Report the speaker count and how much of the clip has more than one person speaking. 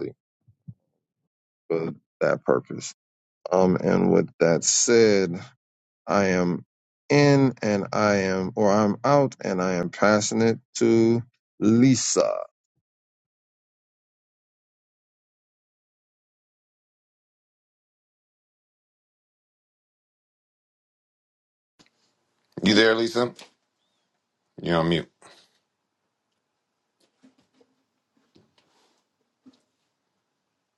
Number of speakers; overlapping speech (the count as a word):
two, no overlap